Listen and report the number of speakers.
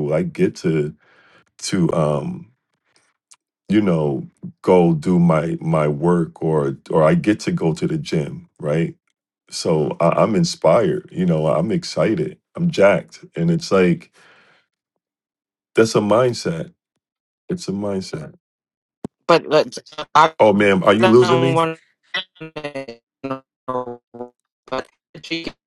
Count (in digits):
2